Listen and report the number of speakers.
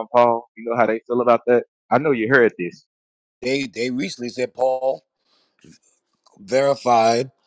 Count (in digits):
2